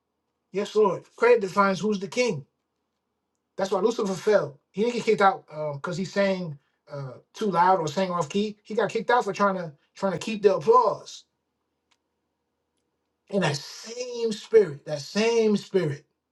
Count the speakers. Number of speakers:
one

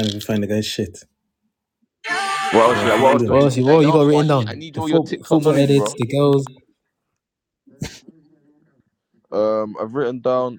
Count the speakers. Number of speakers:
three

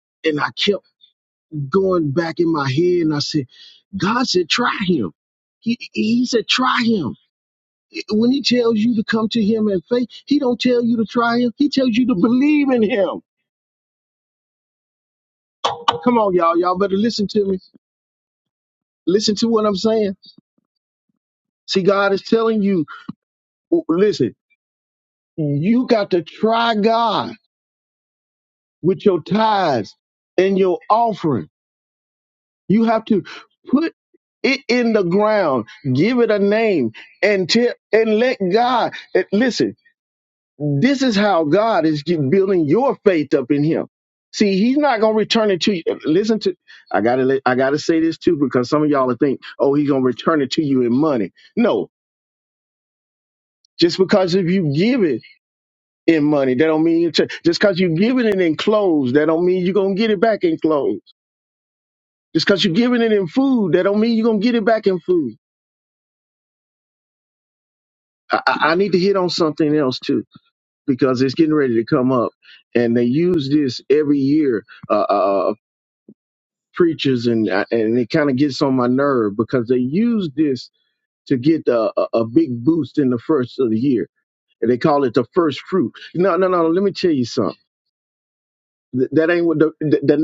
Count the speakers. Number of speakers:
one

